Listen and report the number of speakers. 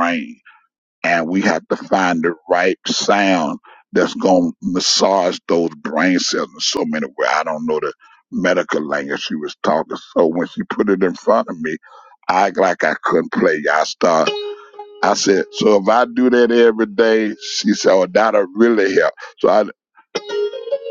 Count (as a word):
one